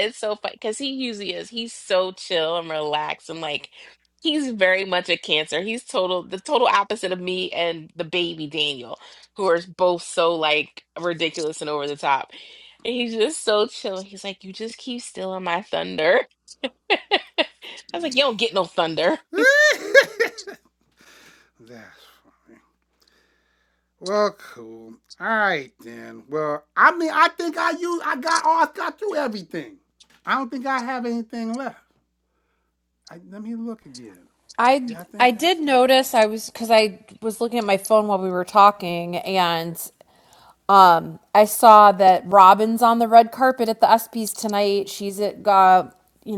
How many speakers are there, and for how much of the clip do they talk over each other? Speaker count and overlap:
three, about 2%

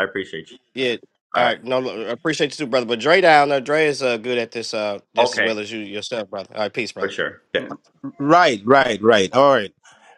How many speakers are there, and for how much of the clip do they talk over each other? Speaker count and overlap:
three, about 7%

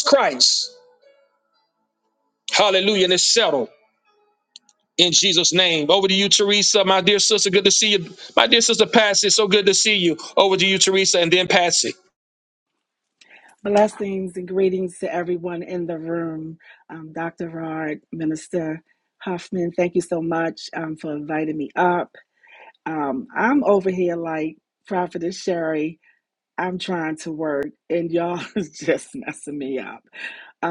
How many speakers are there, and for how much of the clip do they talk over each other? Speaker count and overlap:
two, no overlap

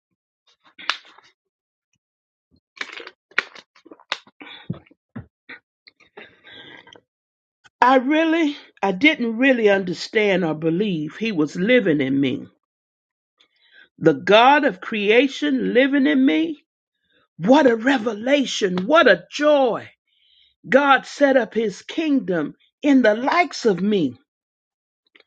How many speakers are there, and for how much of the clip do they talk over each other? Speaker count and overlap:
one, no overlap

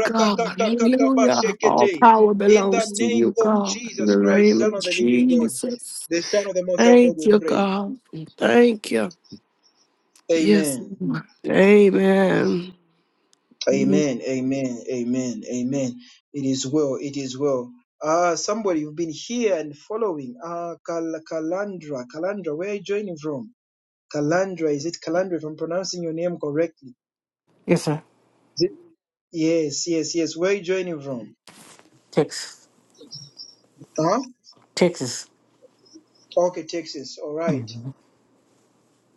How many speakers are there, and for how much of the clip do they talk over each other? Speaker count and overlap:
three, about 17%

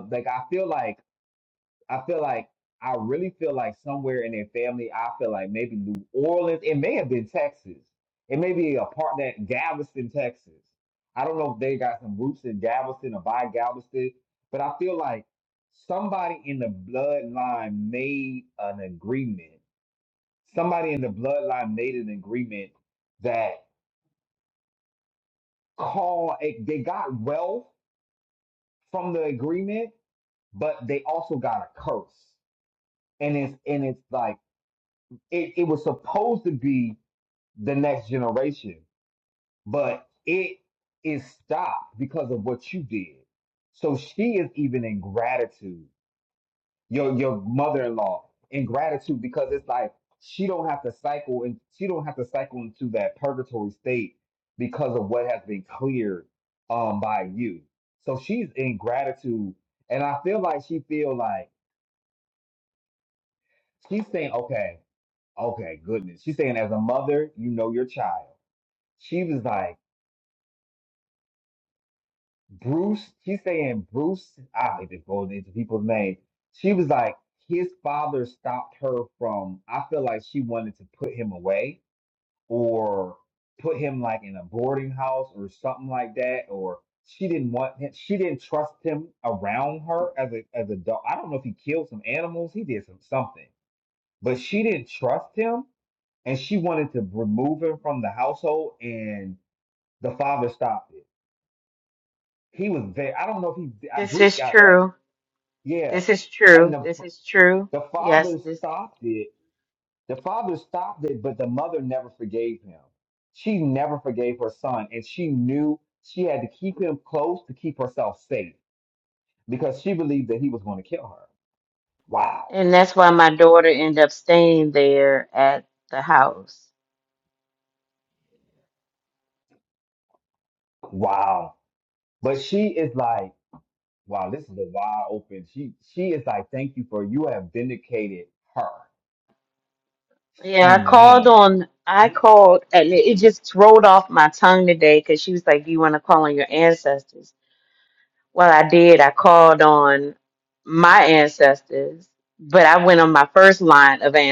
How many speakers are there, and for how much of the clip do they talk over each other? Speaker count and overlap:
two, about 2%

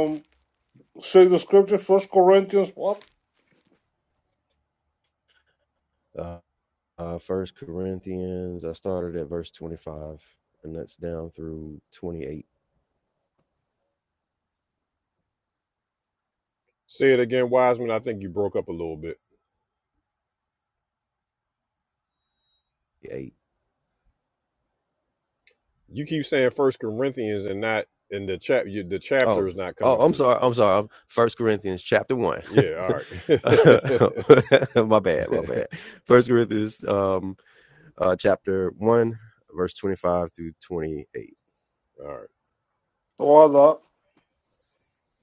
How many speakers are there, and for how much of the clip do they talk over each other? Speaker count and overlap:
three, about 2%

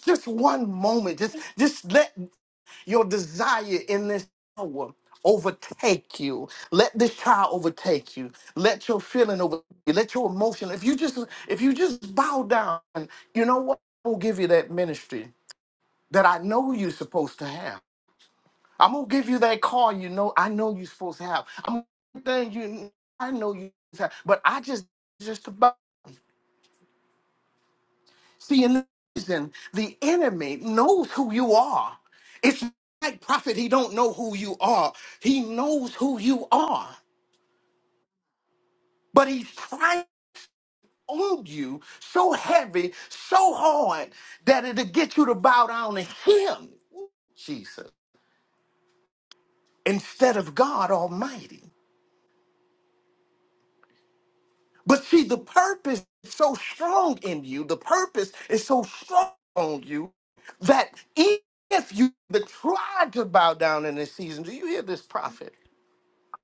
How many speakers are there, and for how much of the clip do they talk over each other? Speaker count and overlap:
one, no overlap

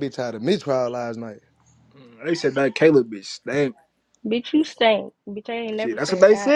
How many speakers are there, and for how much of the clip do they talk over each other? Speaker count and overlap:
three, about 11%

